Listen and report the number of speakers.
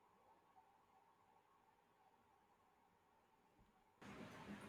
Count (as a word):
zero